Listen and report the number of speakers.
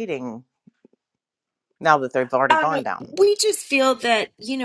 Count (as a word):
two